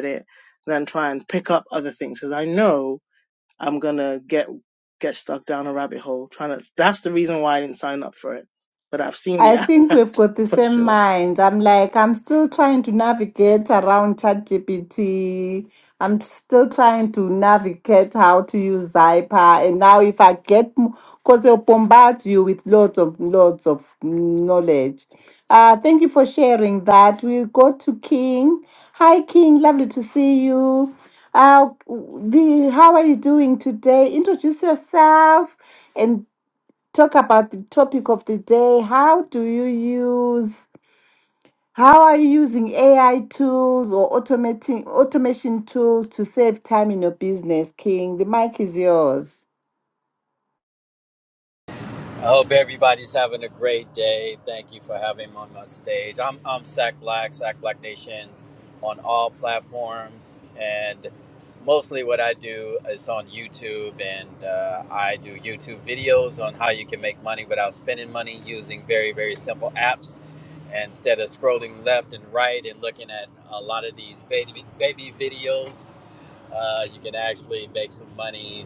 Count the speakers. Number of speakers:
3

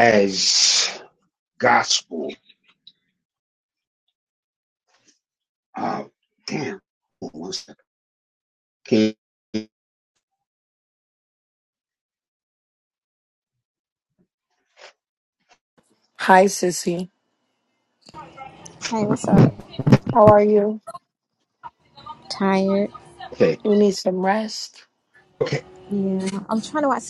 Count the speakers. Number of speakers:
3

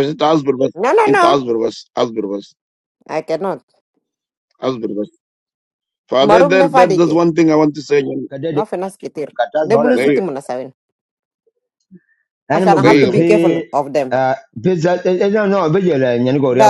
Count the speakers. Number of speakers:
3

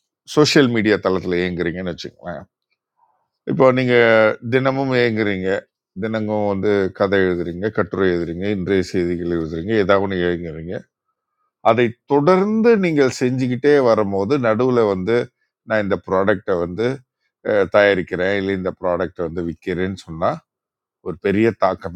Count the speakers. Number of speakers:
1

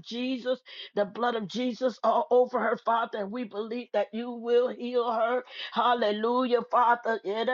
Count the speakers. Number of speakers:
1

